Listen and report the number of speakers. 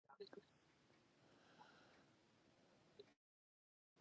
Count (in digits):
0